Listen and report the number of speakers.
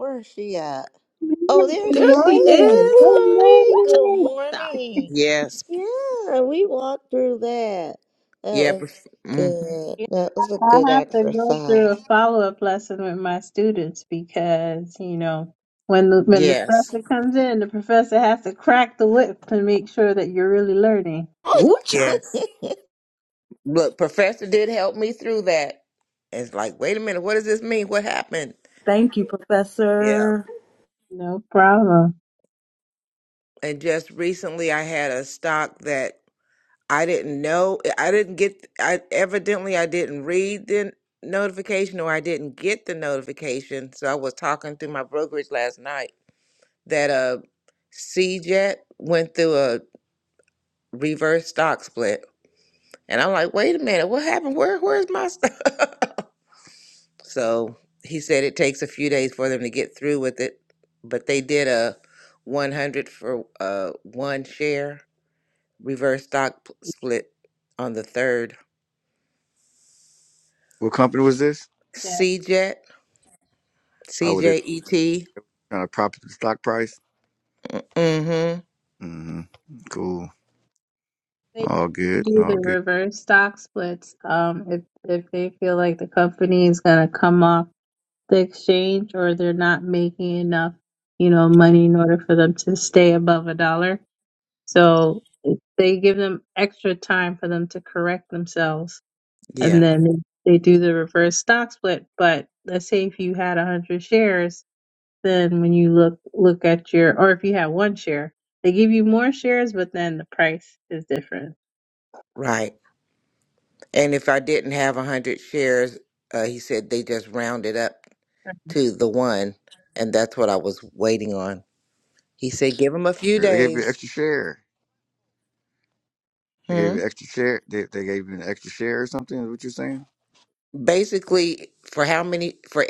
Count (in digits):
5